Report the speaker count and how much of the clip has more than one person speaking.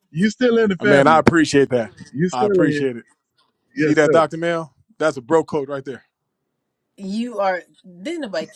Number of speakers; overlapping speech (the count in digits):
3, about 16%